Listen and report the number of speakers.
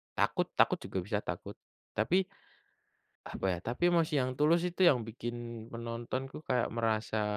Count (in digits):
1